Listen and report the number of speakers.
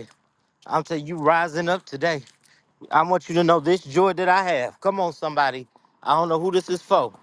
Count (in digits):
1